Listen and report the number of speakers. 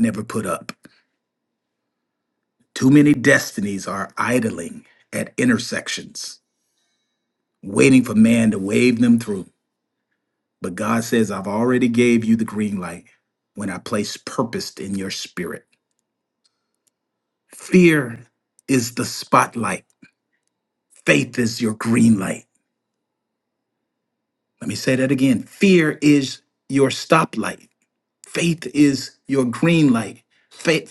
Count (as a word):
one